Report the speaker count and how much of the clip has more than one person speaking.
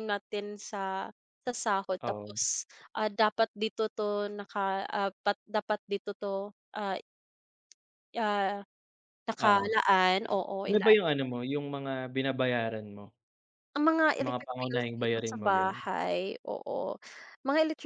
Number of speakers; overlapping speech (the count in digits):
2, about 13%